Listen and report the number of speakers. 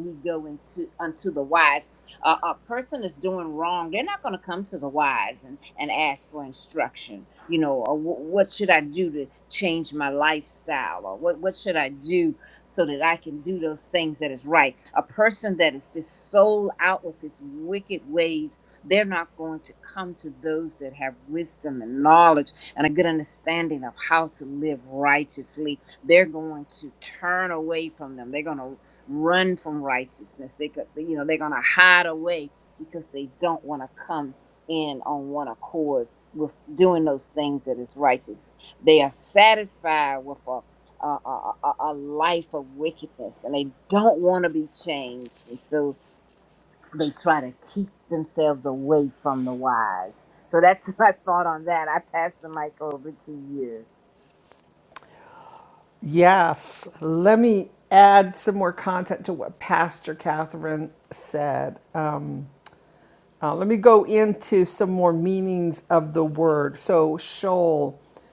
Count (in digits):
2